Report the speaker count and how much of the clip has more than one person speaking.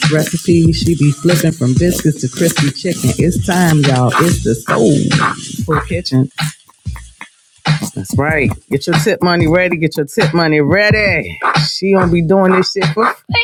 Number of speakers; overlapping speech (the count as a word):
one, no overlap